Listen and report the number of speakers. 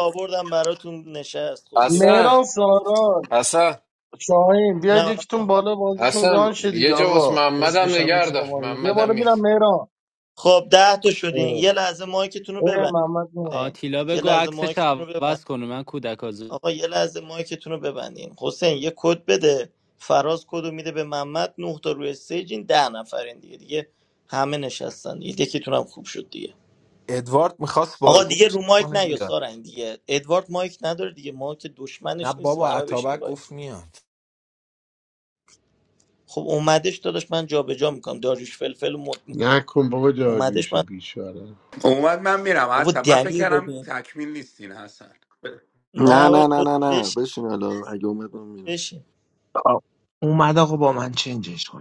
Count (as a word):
nine